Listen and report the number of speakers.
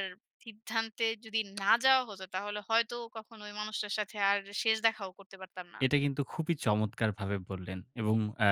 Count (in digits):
2